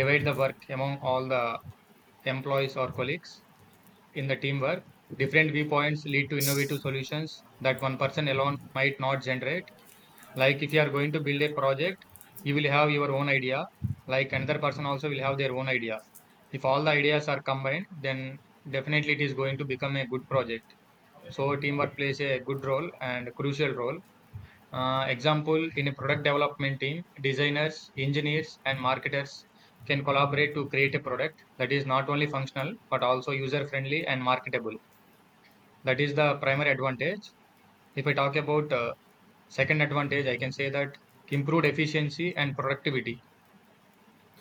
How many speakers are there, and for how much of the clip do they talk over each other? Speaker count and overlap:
one, no overlap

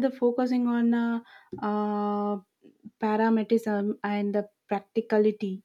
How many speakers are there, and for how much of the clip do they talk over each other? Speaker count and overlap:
one, no overlap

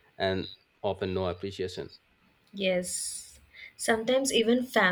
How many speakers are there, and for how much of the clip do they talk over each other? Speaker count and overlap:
two, no overlap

